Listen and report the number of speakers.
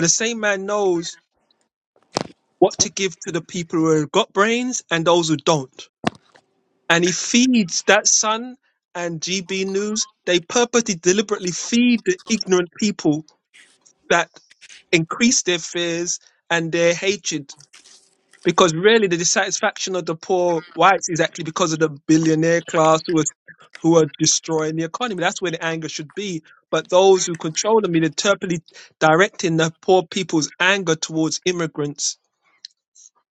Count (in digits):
1